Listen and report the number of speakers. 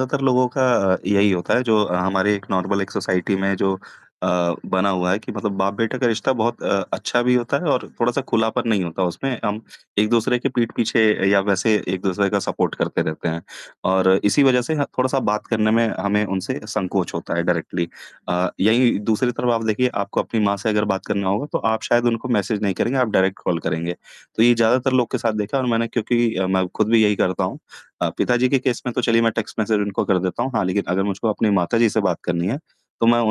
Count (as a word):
one